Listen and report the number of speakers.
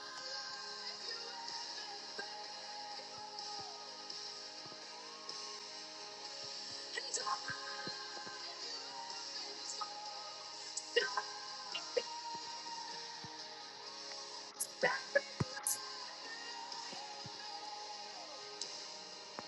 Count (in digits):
0